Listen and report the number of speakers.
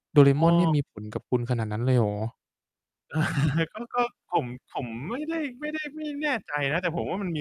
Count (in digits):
2